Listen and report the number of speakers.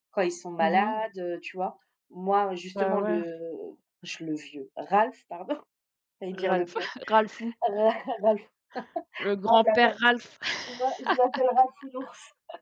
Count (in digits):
2